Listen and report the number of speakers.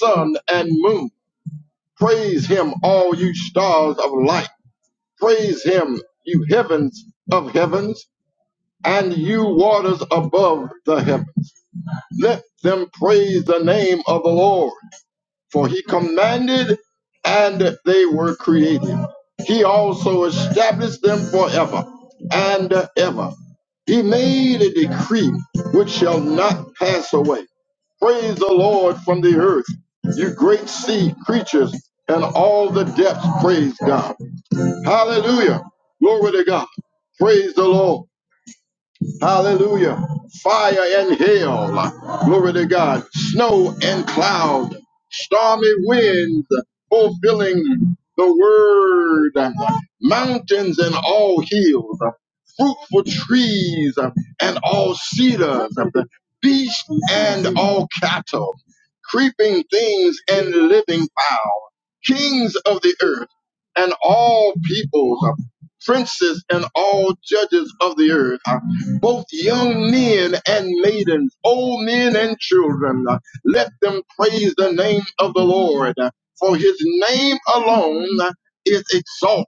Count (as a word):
one